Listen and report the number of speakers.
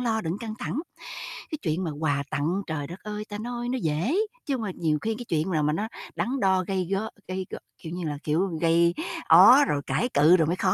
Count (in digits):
1